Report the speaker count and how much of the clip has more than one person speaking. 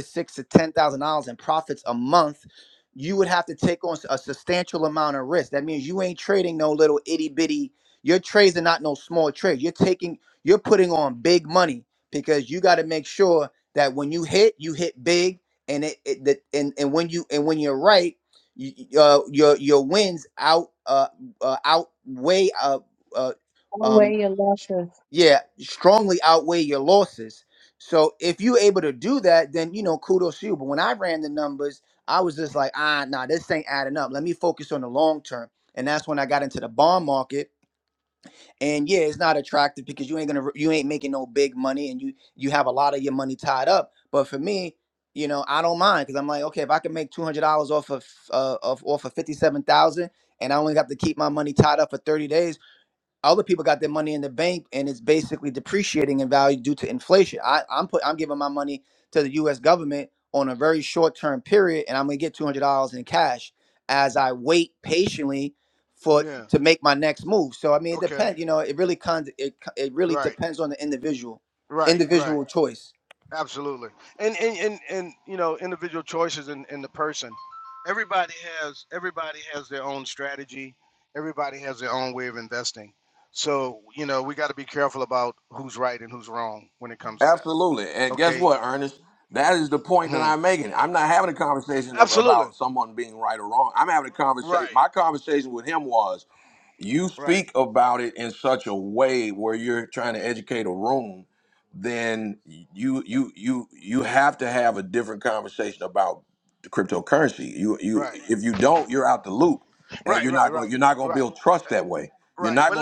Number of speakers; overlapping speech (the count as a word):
four, about 5%